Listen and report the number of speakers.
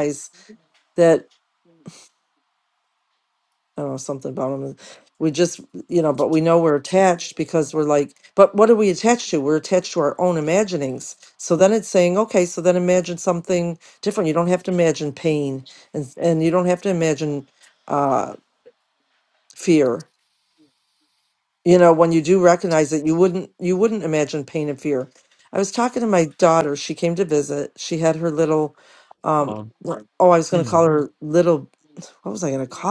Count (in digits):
1